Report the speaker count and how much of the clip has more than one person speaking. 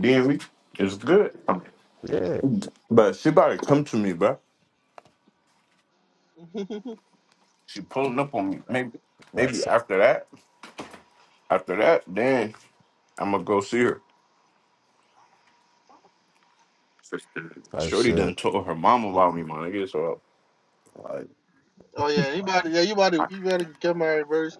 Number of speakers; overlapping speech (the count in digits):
3, about 4%